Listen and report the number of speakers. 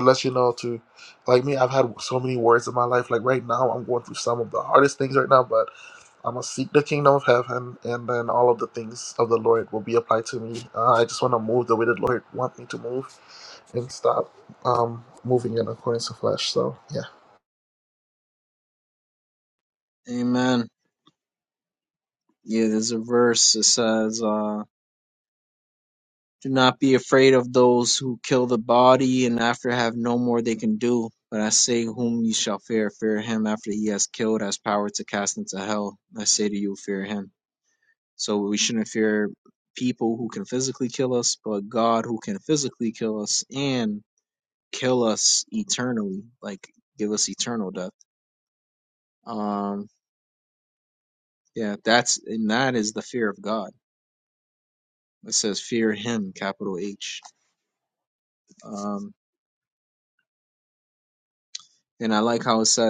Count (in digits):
2